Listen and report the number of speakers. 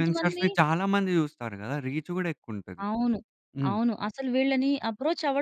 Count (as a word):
two